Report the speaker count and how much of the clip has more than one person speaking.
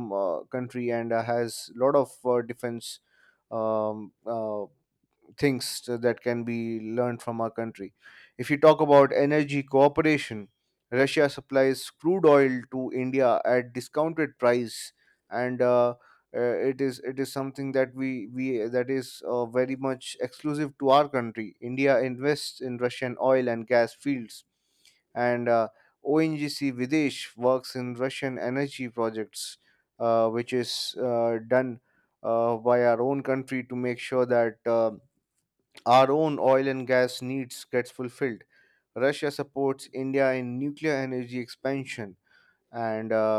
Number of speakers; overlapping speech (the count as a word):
one, no overlap